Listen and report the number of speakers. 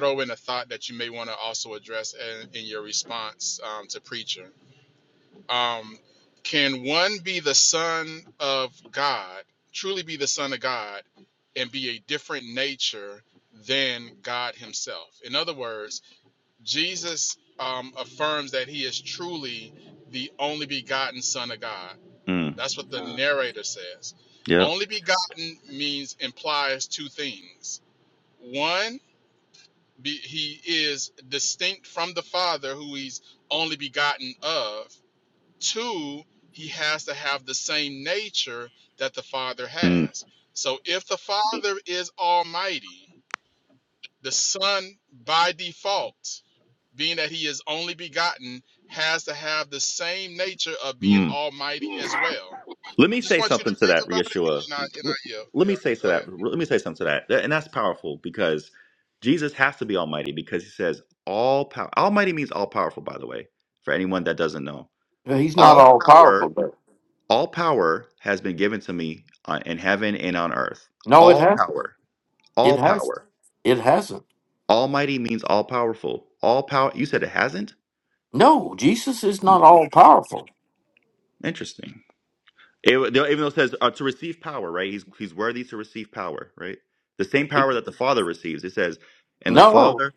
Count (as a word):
three